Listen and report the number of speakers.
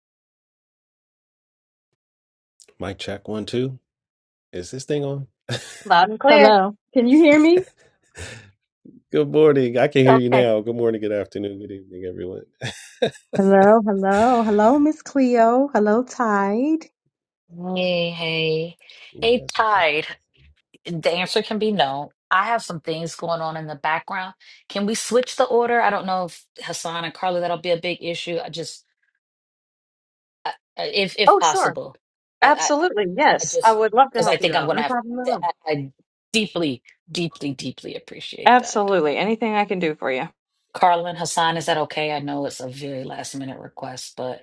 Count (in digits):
4